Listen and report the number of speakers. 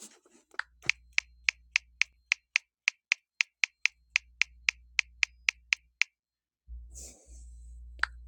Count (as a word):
zero